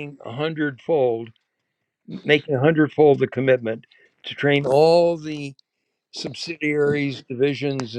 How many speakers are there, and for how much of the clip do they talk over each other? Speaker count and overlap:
1, no overlap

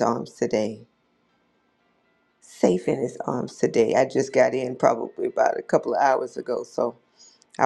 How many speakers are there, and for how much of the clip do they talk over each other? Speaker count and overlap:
1, no overlap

